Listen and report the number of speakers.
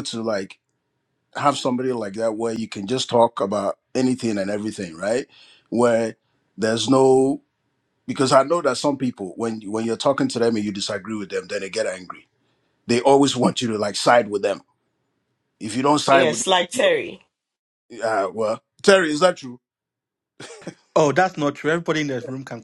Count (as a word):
three